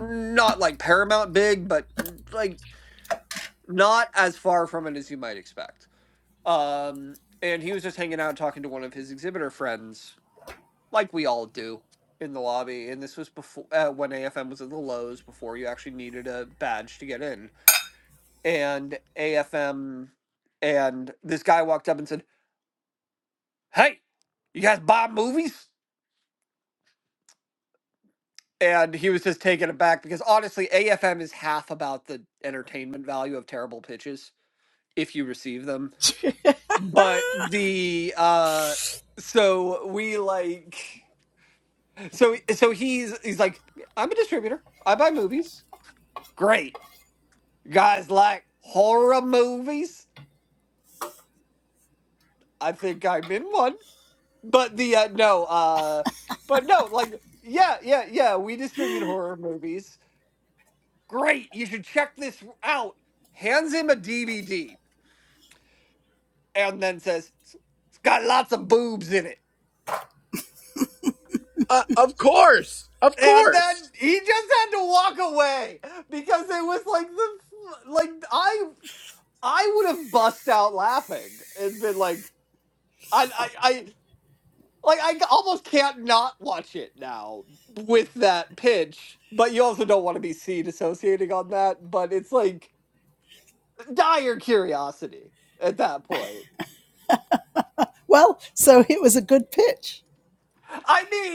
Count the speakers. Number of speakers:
three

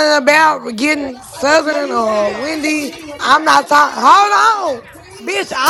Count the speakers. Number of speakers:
one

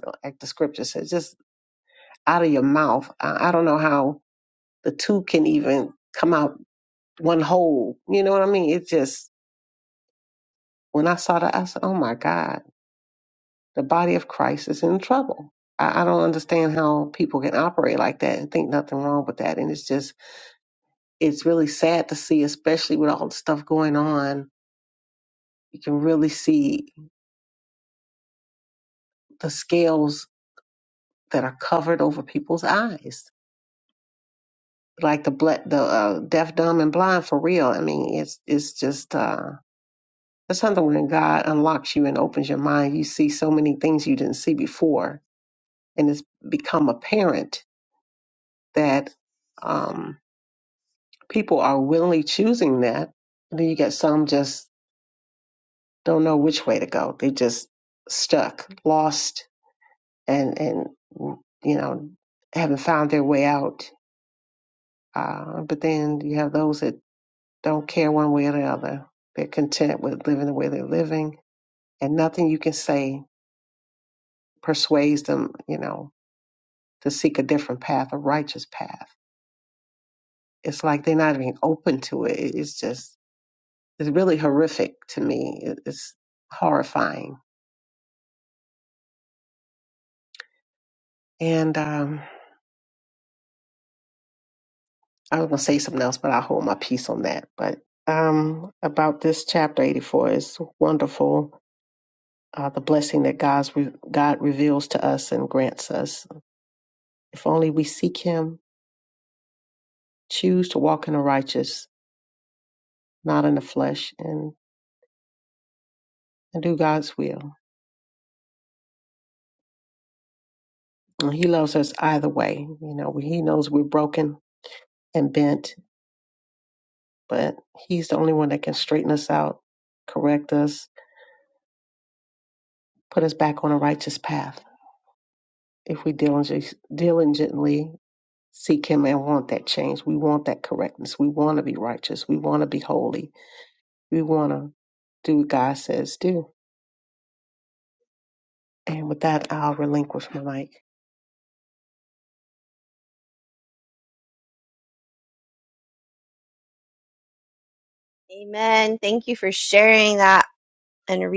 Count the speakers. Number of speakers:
two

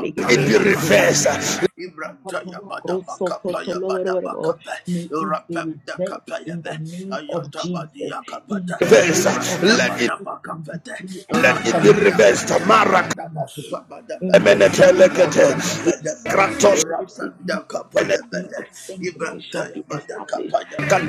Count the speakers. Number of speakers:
three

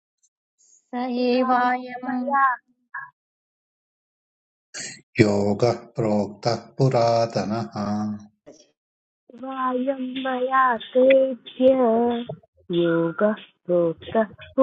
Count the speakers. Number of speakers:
three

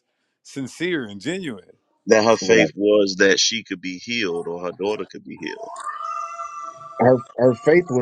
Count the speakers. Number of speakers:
three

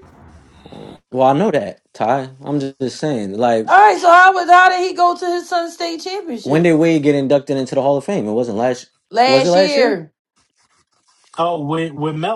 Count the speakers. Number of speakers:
three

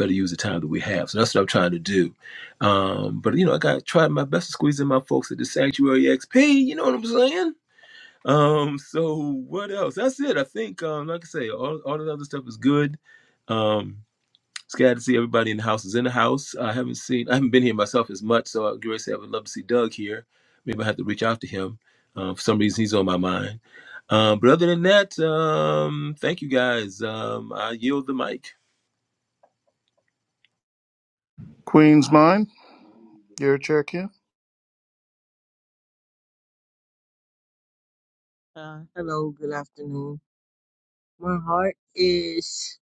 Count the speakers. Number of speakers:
three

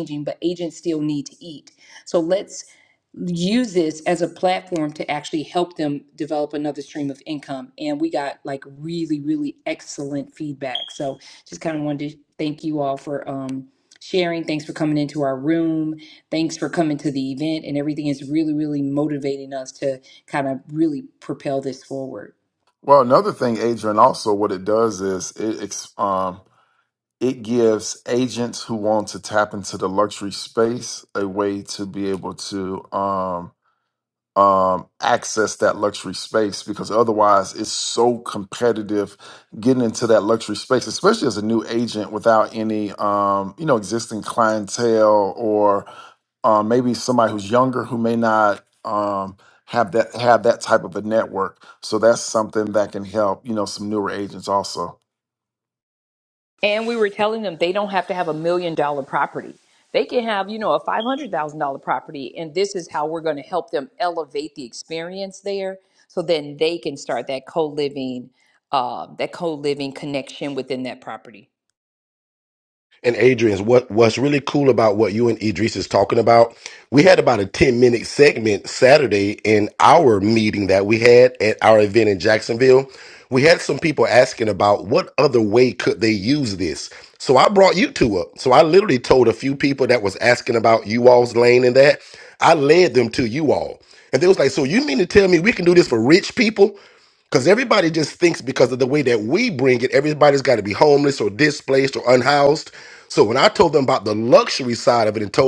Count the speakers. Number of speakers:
three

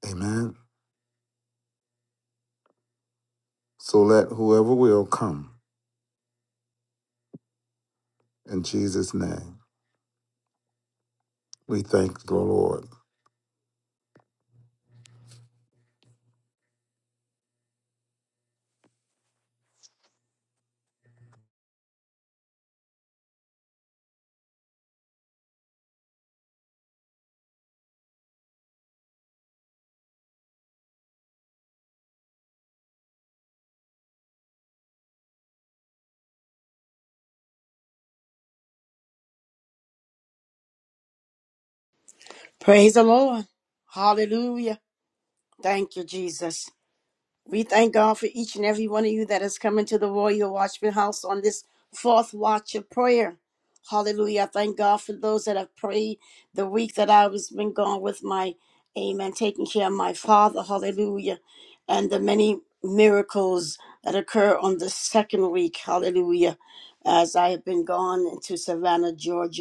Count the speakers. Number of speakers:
two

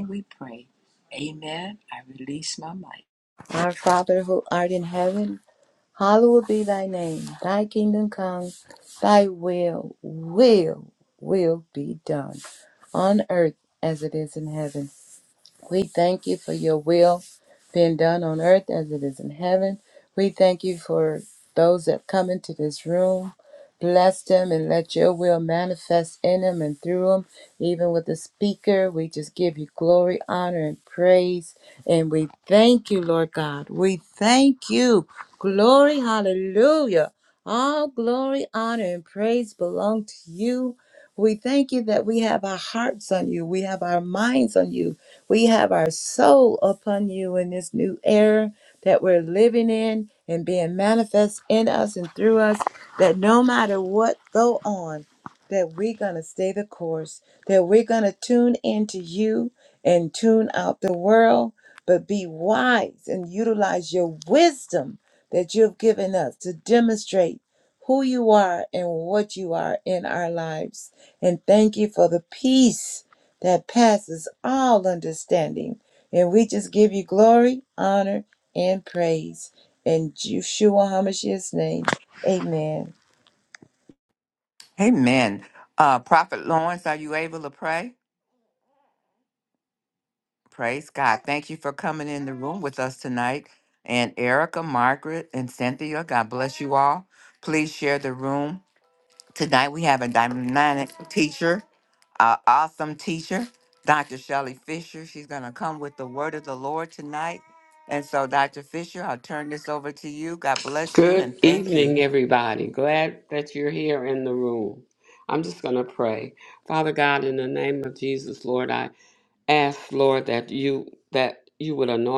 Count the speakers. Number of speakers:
four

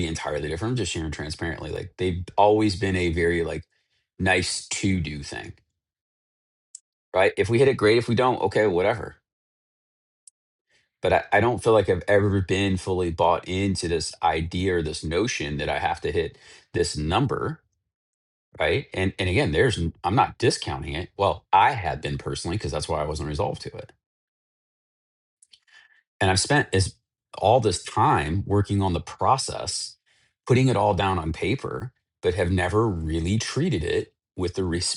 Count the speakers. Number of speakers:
one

